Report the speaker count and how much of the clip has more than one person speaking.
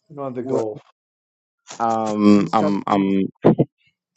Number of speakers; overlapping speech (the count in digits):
2, about 24%